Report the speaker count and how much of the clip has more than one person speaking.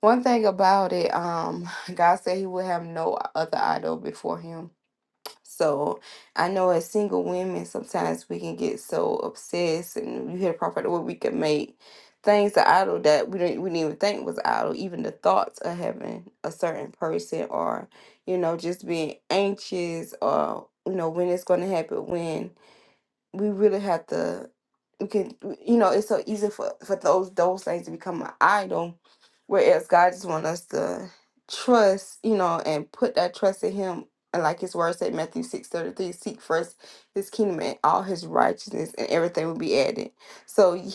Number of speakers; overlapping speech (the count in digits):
1, no overlap